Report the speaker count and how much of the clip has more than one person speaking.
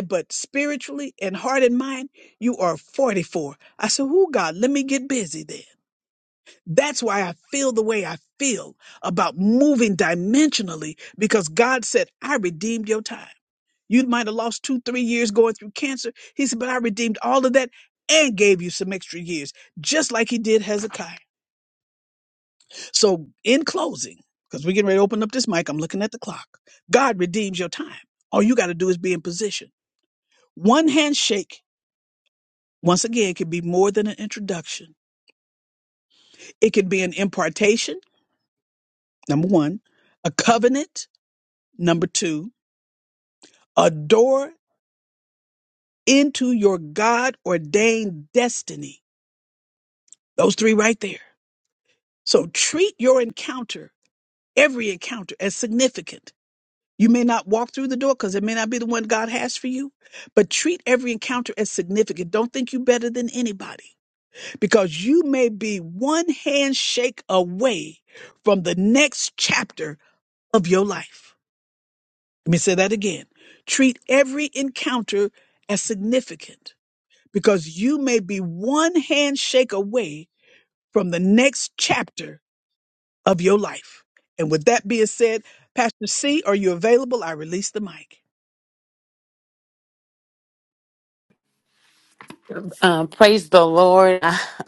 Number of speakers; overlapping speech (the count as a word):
two, no overlap